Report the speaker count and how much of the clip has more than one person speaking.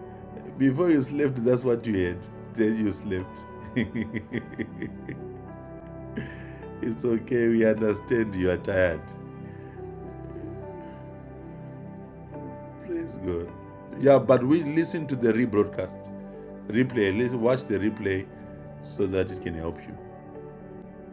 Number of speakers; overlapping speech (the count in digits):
1, no overlap